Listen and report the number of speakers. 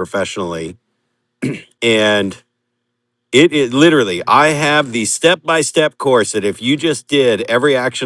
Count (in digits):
1